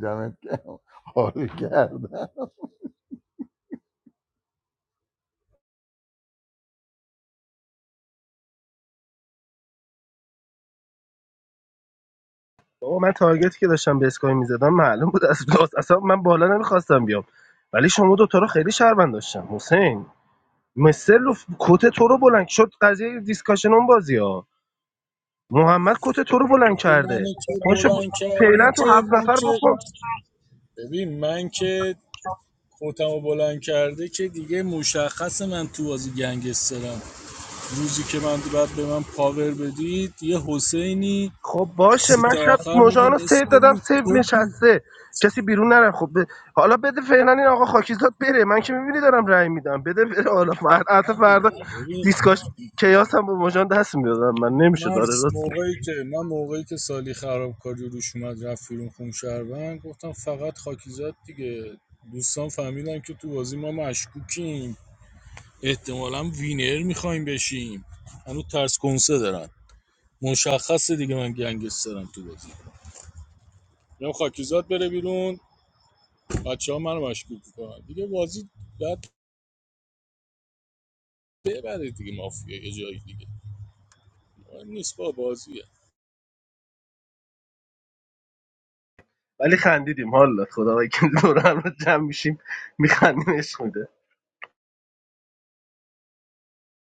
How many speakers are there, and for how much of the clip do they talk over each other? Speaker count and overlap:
3, about 5%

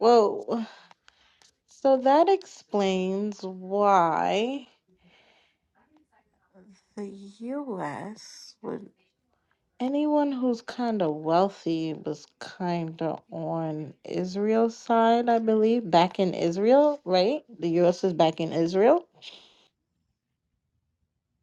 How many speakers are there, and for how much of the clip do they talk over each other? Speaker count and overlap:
1, no overlap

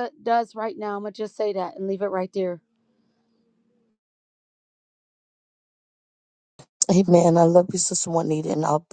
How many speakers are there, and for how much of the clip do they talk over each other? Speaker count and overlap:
2, no overlap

